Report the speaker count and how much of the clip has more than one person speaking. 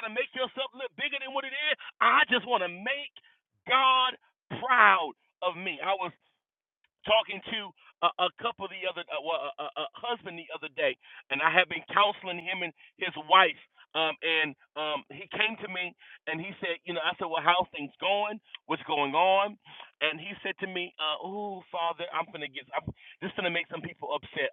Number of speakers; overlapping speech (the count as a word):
one, no overlap